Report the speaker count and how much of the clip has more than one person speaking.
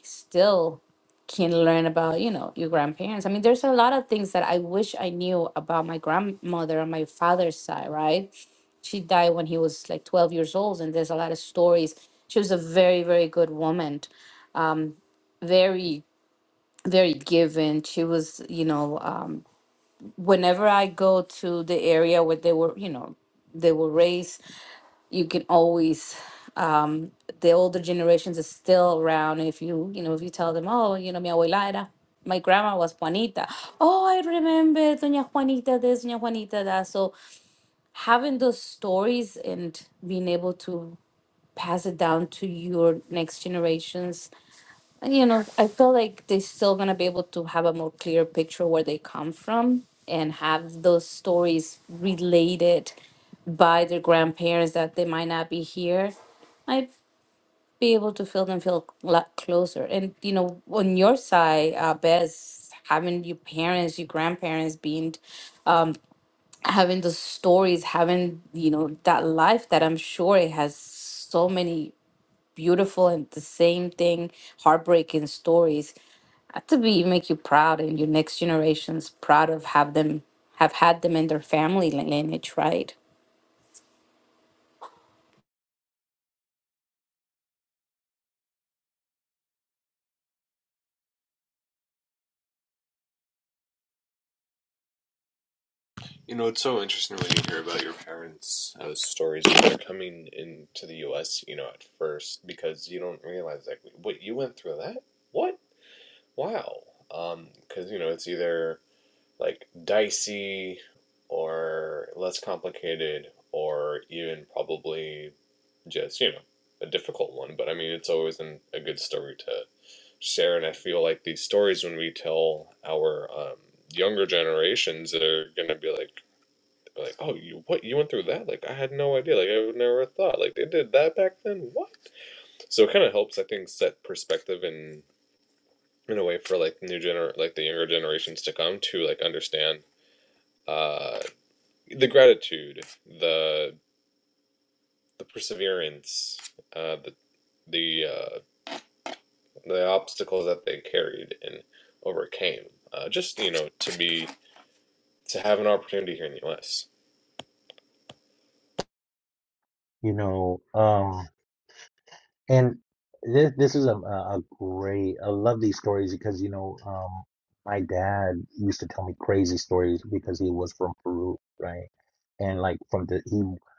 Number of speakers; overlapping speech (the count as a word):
three, no overlap